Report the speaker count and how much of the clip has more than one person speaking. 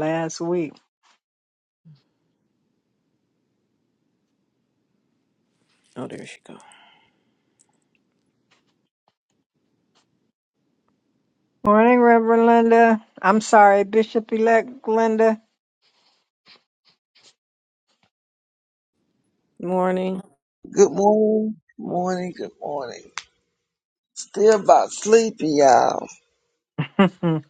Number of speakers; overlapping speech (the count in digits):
3, no overlap